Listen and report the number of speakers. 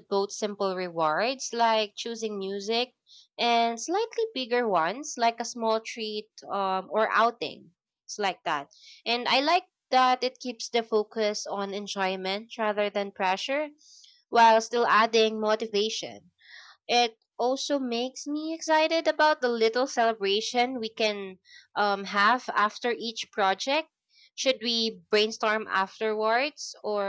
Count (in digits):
1